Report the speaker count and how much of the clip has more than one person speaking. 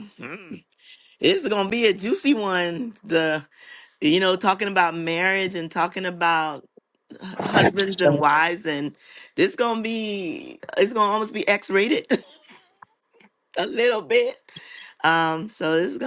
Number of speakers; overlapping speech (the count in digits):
1, no overlap